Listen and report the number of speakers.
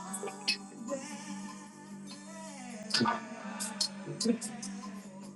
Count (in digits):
0